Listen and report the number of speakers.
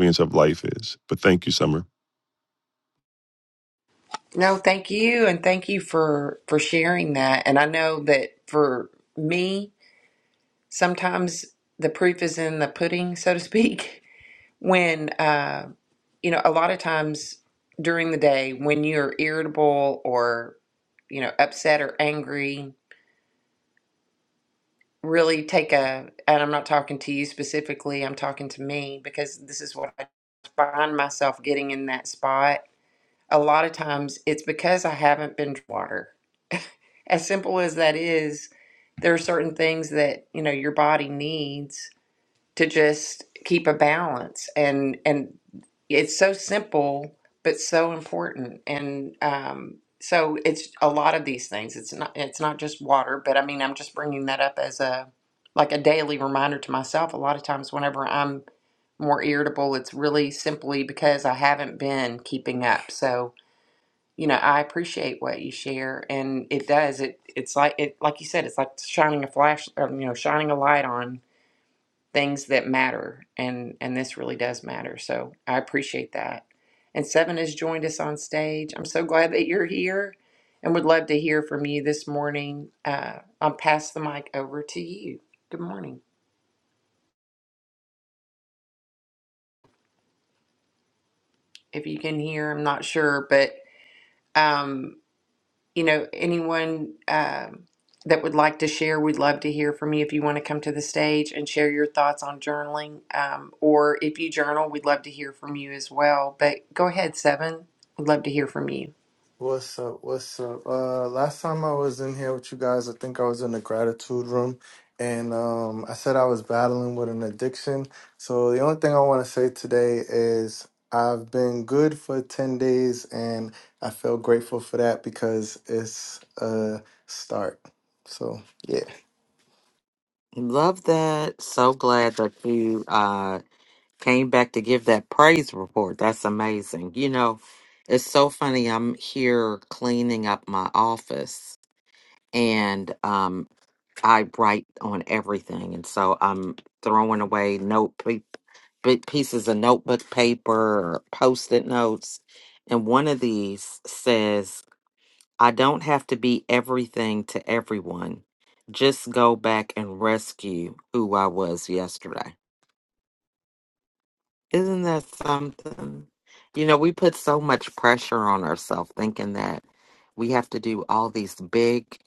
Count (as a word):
four